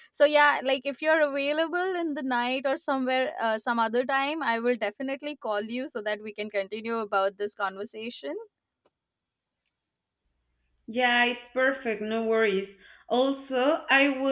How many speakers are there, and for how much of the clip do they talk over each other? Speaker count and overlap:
2, no overlap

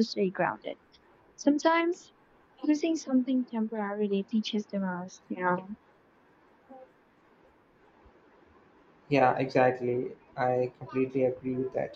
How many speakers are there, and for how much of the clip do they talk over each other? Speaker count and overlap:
2, no overlap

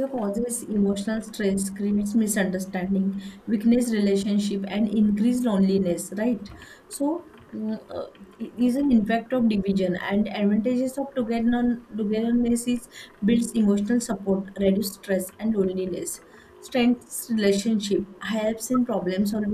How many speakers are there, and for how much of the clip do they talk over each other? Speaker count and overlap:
1, no overlap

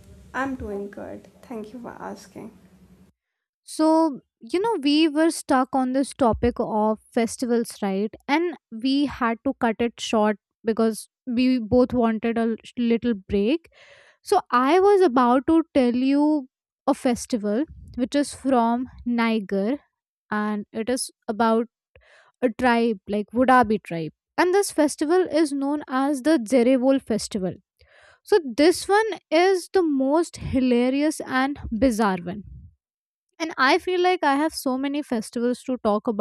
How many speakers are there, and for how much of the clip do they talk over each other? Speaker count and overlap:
2, no overlap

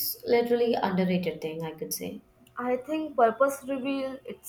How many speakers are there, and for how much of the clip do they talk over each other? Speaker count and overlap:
2, no overlap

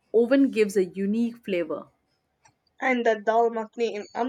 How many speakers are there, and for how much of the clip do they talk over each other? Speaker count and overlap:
2, no overlap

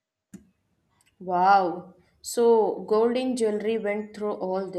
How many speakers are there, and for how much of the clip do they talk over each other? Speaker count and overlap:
1, no overlap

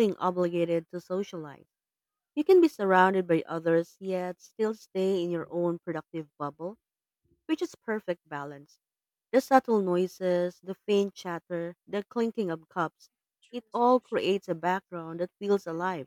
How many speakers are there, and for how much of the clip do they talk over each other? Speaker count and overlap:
1, no overlap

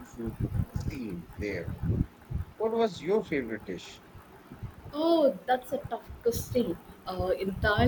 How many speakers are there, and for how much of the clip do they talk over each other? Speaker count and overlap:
2, no overlap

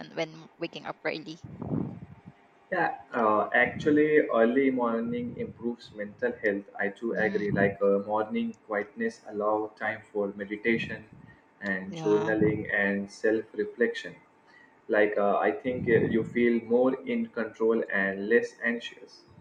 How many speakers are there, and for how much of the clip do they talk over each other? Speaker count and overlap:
2, about 6%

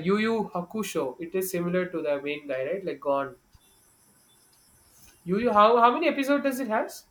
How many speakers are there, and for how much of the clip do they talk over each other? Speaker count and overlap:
1, no overlap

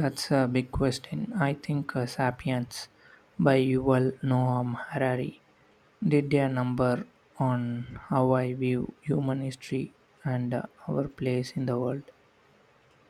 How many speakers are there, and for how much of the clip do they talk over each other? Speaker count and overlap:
1, no overlap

